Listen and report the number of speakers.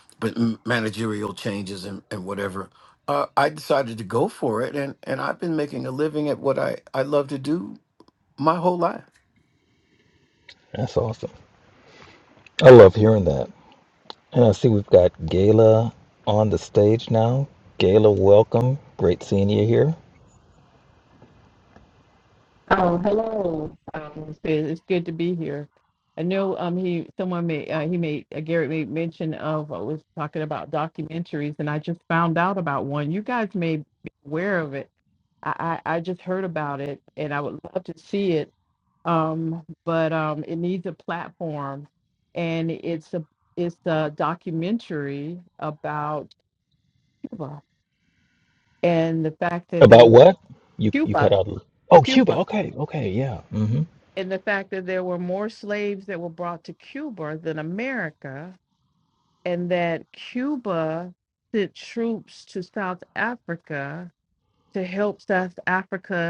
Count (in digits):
3